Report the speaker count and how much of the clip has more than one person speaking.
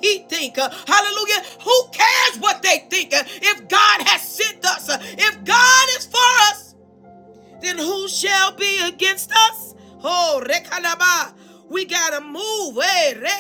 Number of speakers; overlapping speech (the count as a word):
one, no overlap